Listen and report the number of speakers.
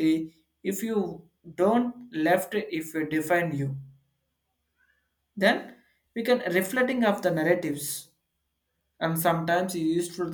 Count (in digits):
1